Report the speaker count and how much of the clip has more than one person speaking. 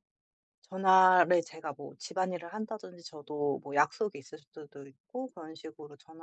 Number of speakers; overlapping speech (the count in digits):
1, no overlap